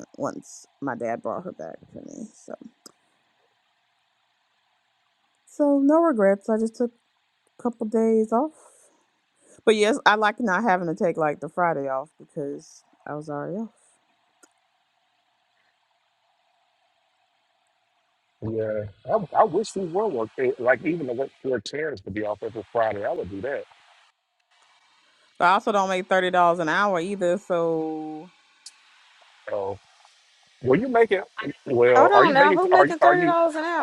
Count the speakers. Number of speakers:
3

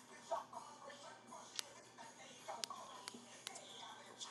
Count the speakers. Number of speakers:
0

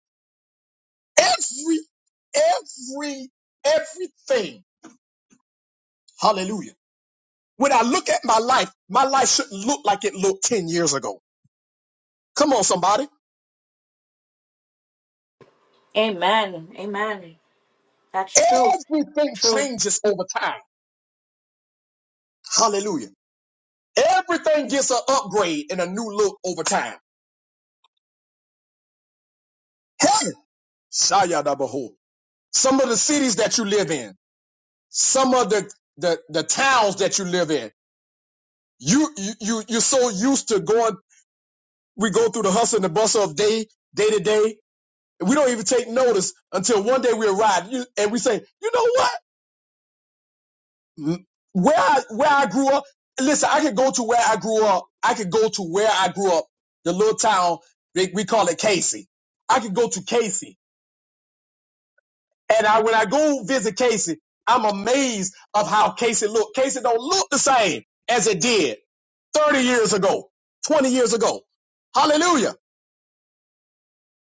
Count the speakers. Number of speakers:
2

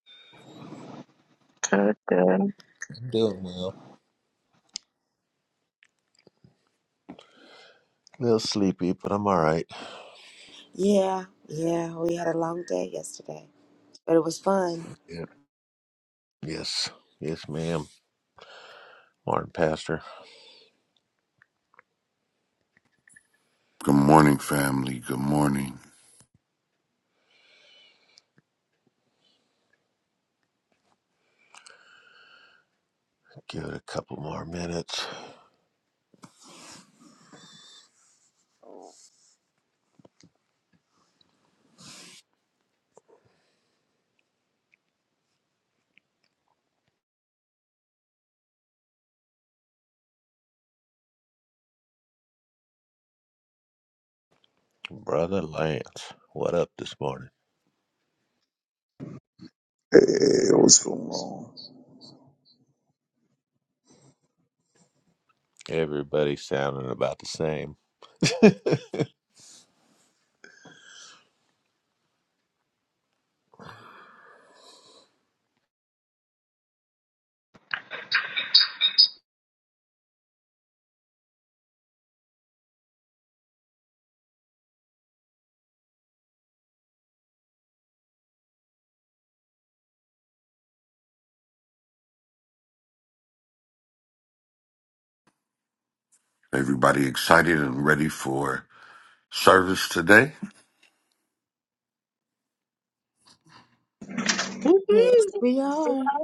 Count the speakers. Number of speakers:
5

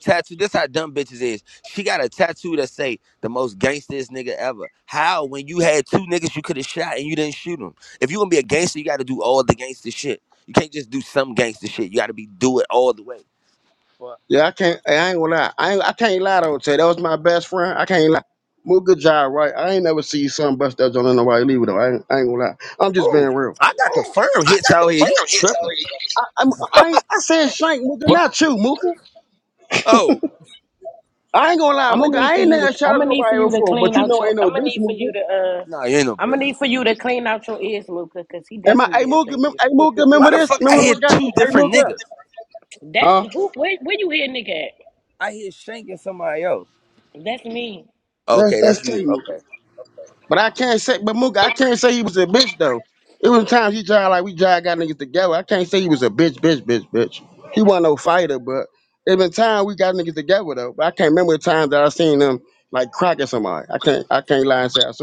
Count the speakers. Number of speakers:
3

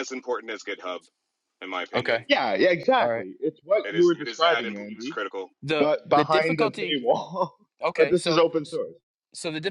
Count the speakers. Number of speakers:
3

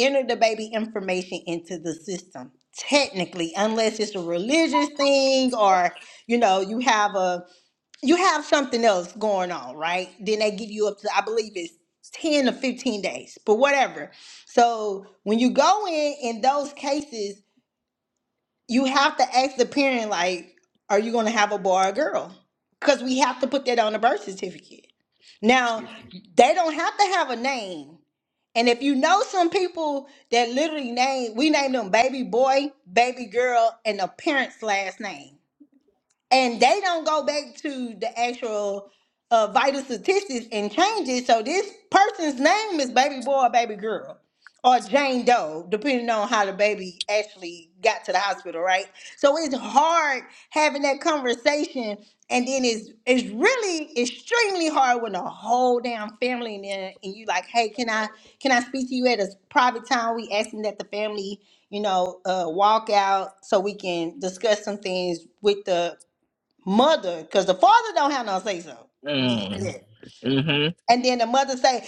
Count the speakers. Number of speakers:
2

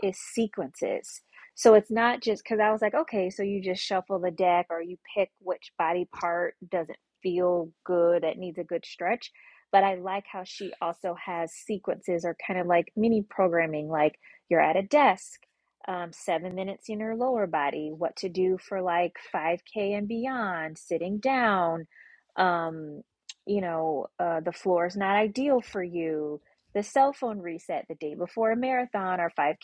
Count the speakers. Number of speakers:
1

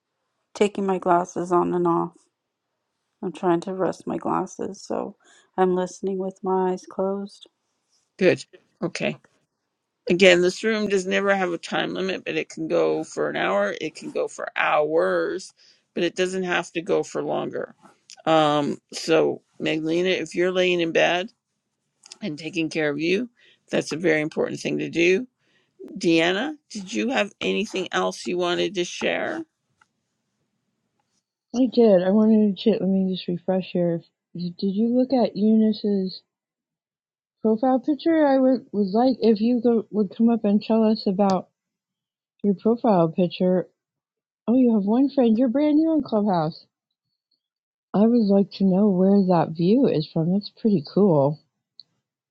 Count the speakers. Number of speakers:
3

